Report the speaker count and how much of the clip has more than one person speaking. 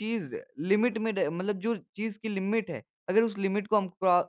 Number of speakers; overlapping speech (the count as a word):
one, no overlap